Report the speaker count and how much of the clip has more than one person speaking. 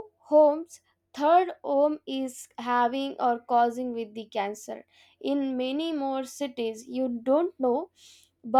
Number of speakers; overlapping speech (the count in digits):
1, no overlap